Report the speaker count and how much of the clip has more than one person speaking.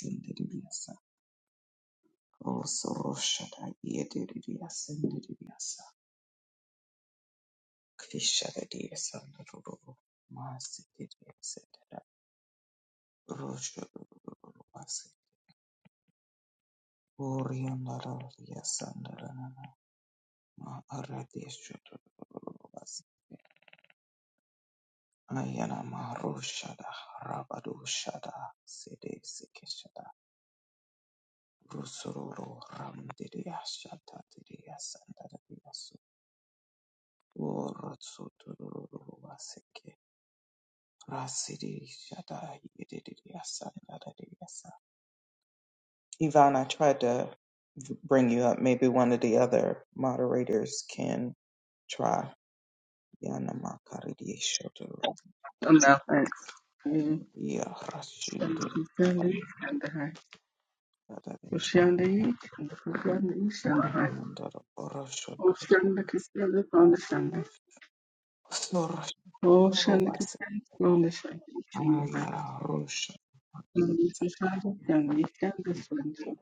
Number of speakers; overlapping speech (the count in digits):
2, about 3%